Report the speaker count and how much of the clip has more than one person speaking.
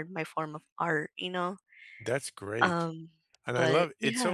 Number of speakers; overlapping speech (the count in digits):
2, about 23%